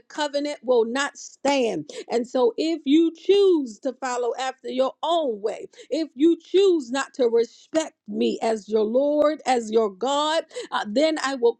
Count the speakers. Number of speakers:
one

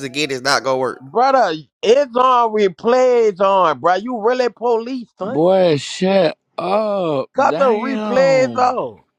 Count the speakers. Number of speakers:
three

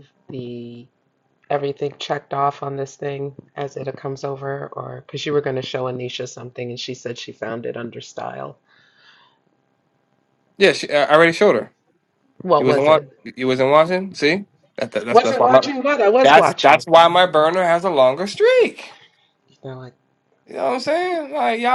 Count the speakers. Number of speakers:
two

